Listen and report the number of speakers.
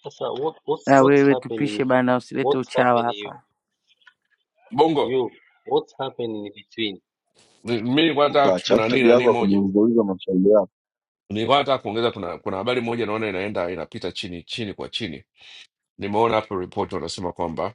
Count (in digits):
4